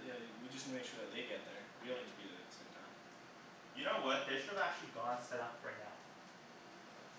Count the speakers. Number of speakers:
two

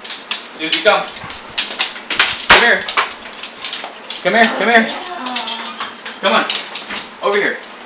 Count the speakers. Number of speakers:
two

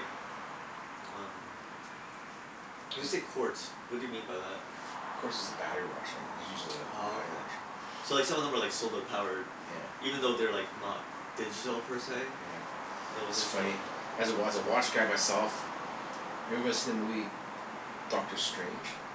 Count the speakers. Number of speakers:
two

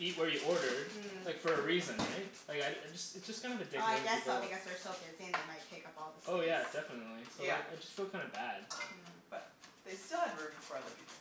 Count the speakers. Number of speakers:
three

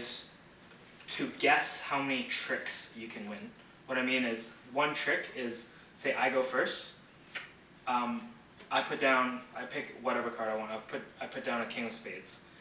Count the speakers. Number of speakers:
one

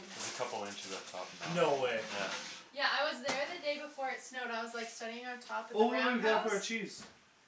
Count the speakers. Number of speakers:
three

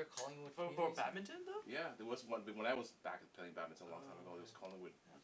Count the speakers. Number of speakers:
three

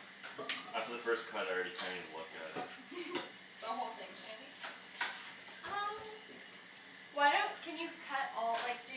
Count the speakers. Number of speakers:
three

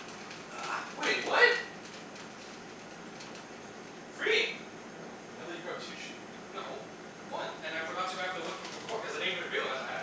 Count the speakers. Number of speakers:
two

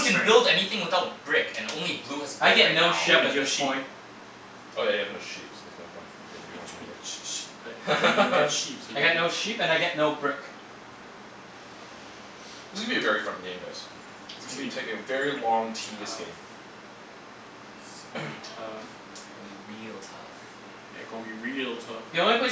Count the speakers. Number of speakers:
four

